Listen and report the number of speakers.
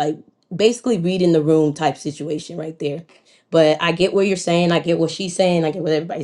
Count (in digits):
1